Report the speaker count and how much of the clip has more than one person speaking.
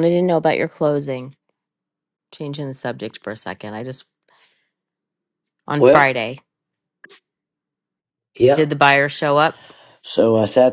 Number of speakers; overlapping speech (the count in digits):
2, about 3%